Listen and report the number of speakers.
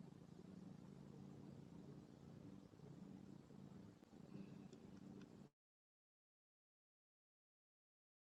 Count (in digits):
0